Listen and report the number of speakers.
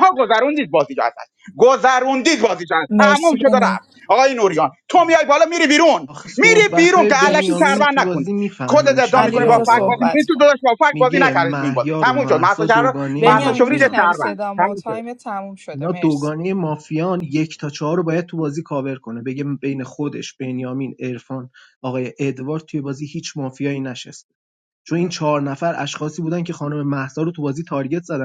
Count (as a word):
three